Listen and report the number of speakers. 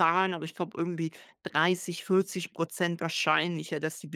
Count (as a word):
one